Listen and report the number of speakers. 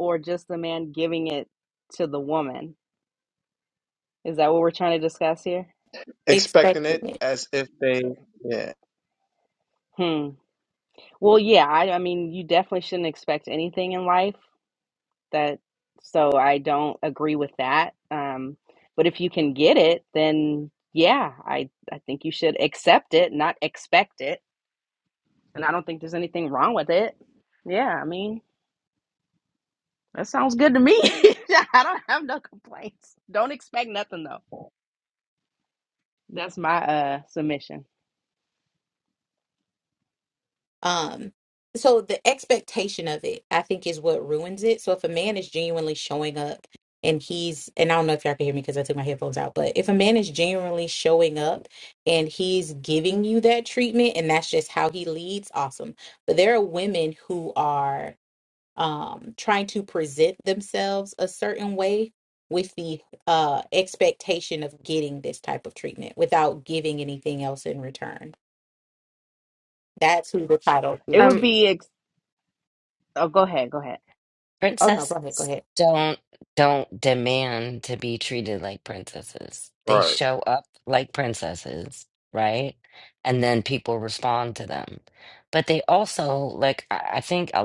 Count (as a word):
four